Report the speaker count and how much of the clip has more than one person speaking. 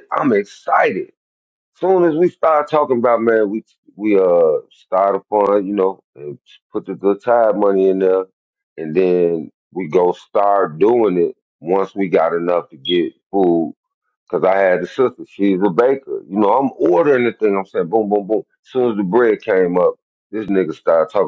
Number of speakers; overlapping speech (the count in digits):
1, no overlap